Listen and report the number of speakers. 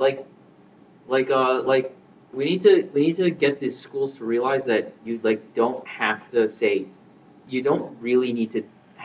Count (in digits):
1